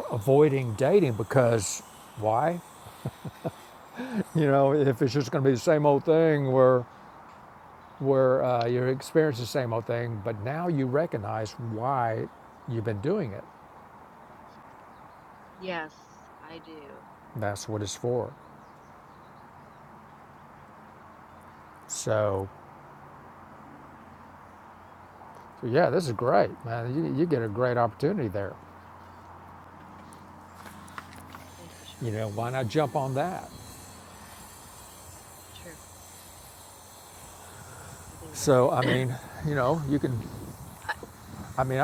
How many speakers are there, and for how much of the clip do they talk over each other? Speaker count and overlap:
2, about 1%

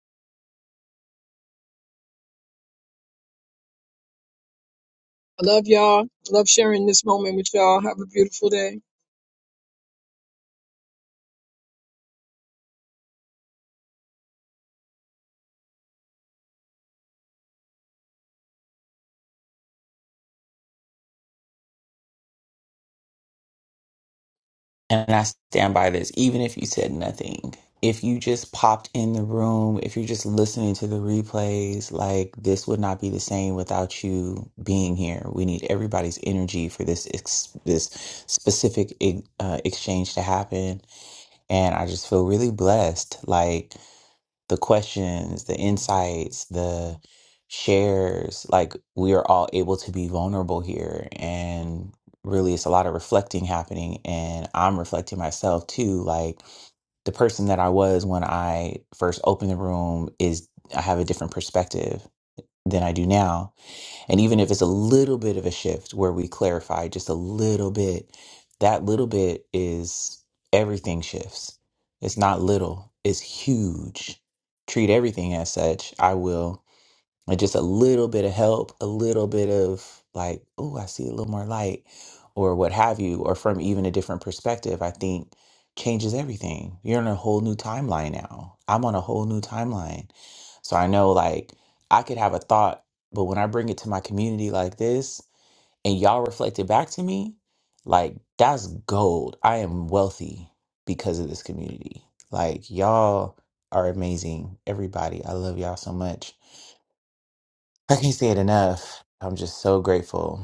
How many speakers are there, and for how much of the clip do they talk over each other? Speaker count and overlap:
2, no overlap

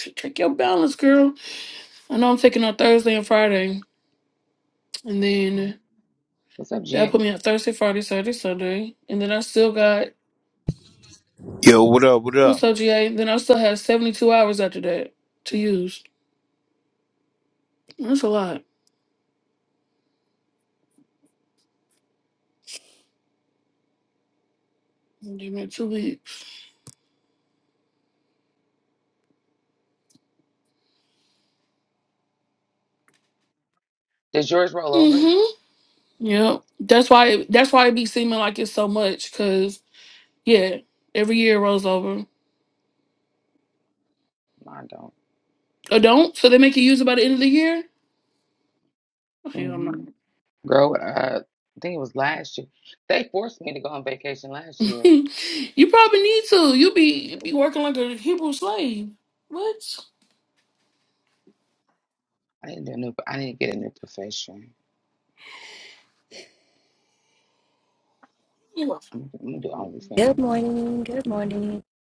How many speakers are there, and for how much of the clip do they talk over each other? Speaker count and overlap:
4, about 3%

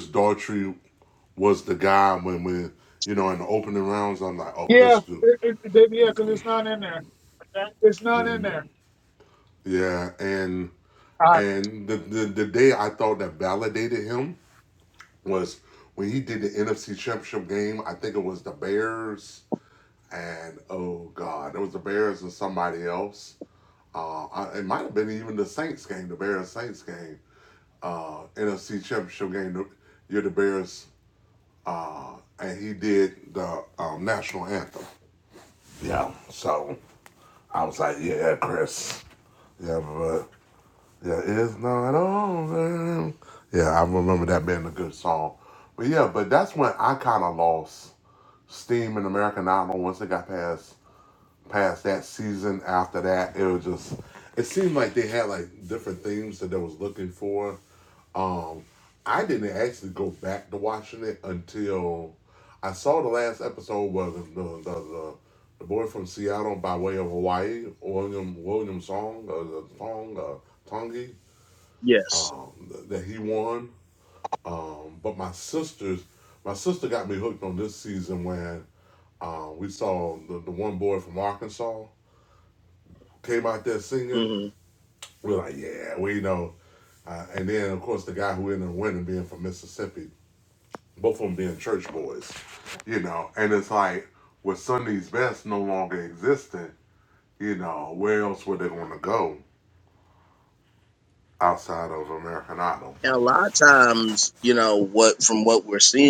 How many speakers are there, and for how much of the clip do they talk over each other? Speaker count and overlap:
3, about 1%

